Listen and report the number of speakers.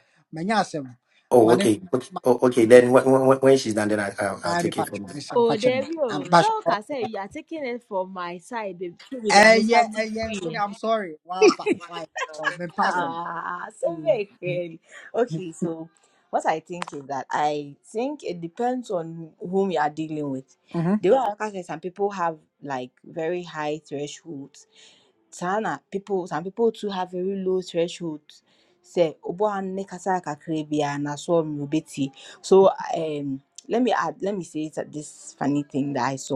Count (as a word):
three